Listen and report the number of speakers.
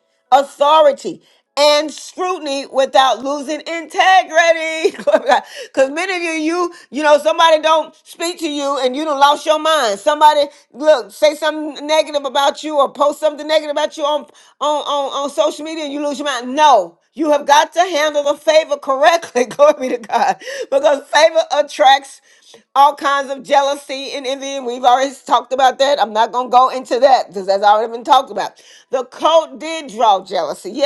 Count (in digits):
1